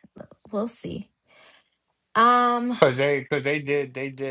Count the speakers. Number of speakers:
2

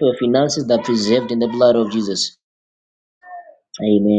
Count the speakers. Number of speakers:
1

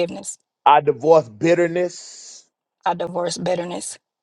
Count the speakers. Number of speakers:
2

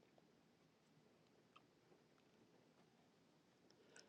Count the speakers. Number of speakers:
0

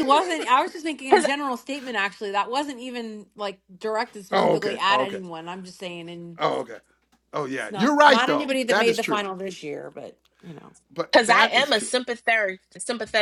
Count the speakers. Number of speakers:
3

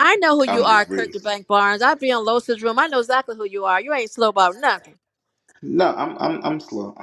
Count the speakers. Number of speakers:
2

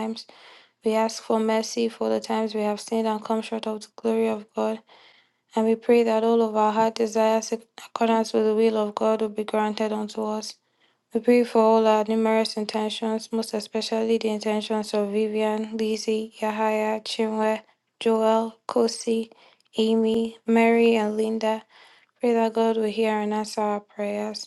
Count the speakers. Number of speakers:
1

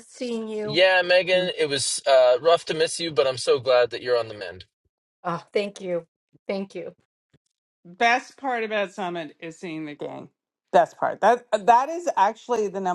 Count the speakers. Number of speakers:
3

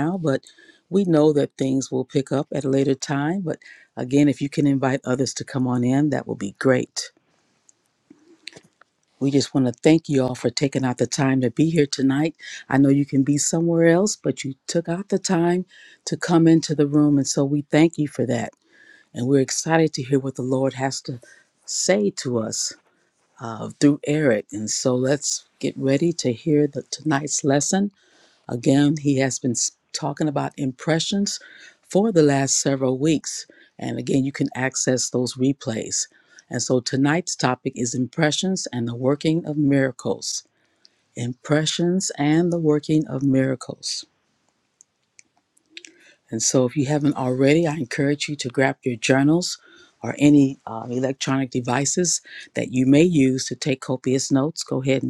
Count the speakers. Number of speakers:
1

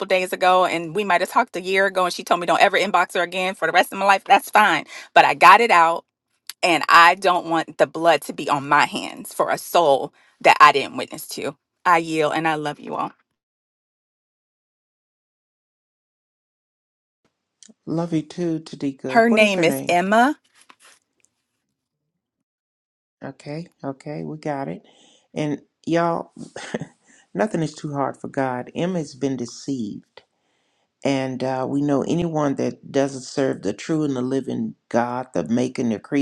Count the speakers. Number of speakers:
2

